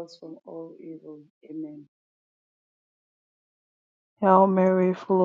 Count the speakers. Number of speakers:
two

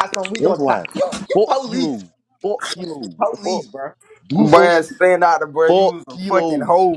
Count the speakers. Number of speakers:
three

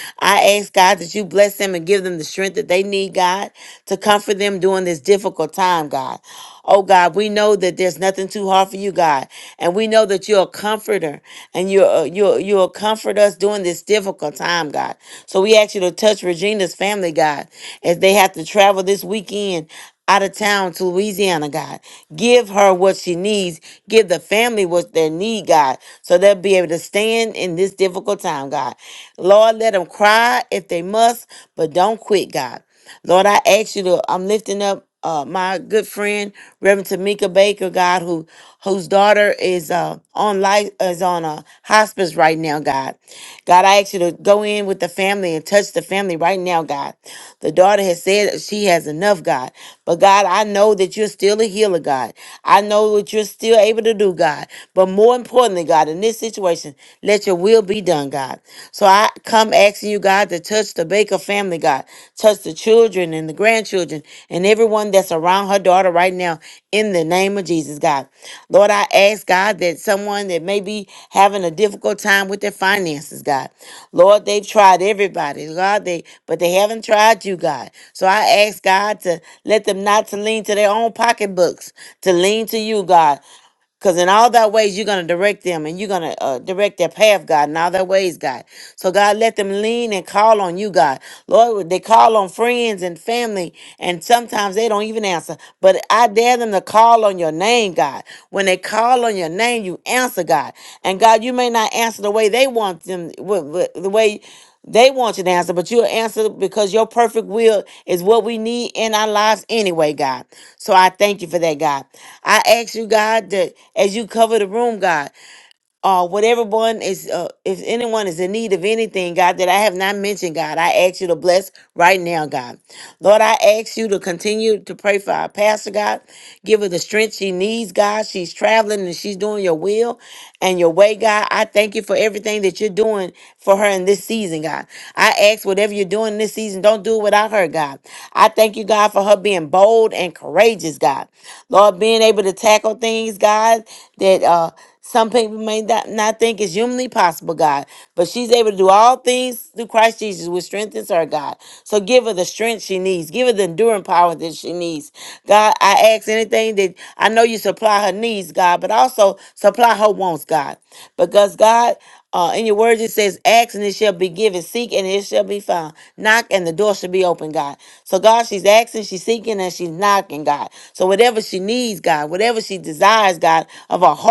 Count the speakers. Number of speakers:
one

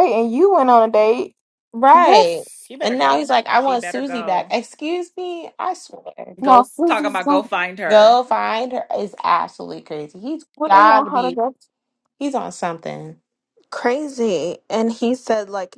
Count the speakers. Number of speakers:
four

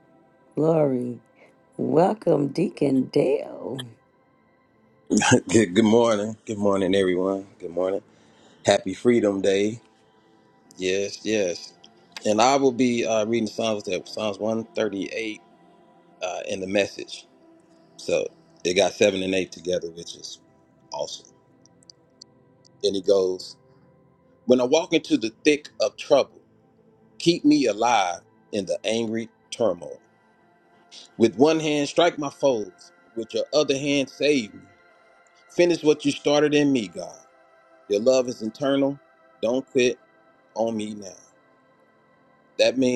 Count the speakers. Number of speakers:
two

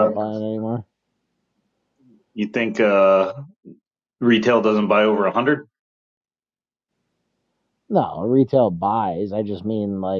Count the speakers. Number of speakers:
two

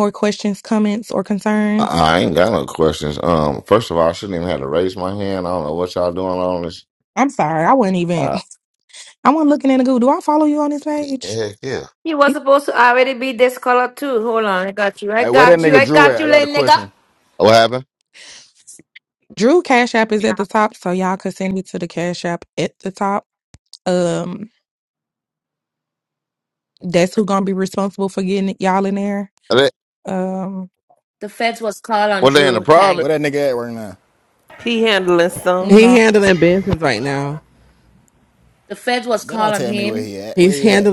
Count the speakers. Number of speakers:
six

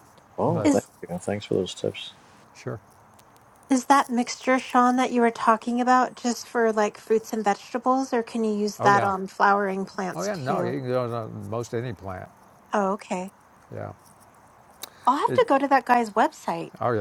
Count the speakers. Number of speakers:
three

